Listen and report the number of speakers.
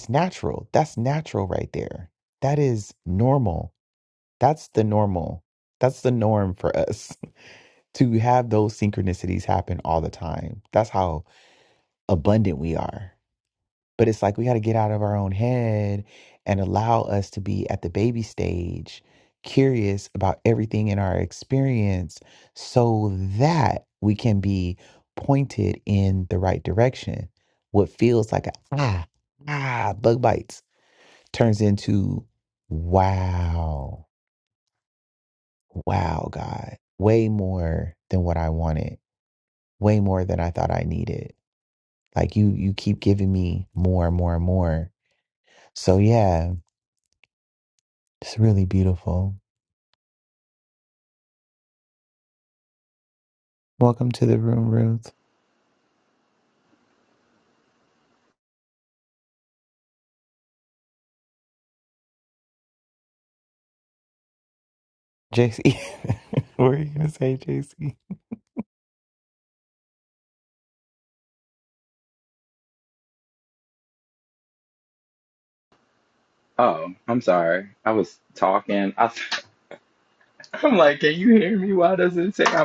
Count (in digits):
2